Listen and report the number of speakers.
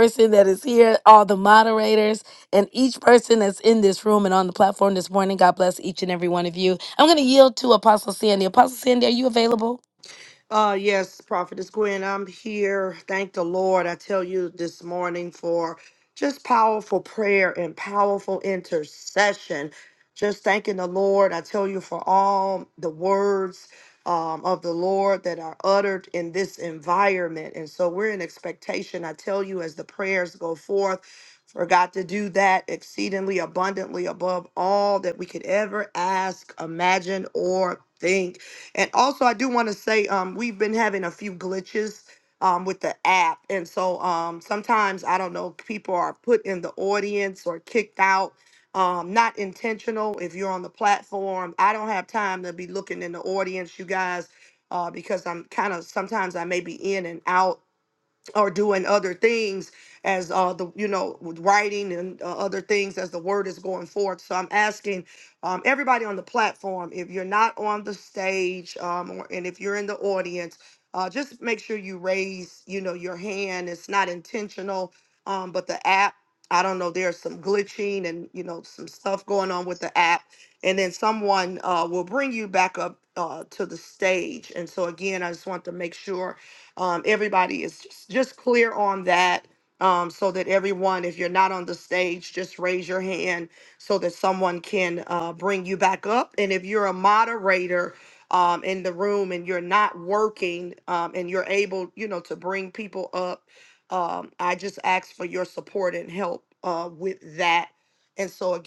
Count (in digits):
2